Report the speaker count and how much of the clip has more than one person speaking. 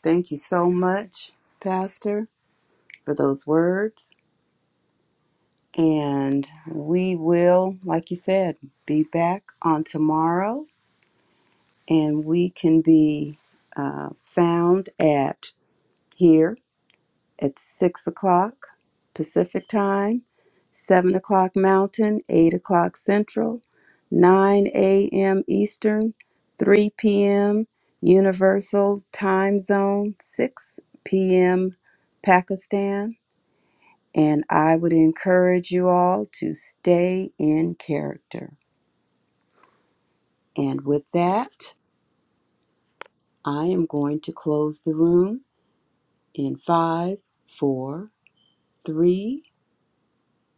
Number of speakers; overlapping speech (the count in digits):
1, no overlap